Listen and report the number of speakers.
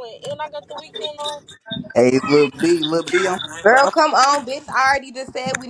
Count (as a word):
three